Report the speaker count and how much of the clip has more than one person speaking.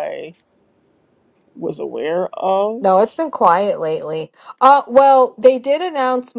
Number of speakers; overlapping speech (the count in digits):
2, under 1%